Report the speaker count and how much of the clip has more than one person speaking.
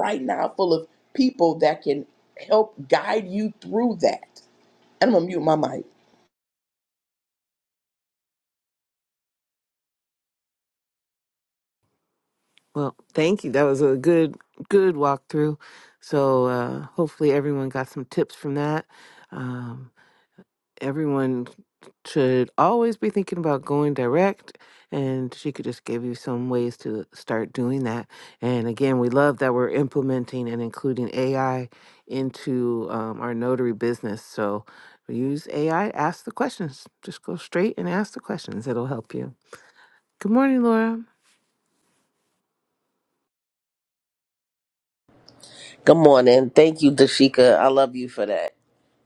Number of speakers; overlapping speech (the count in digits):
3, no overlap